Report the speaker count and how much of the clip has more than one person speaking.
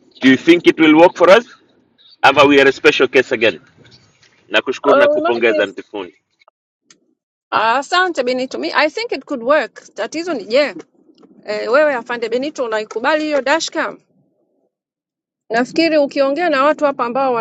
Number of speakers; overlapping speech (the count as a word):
two, about 5%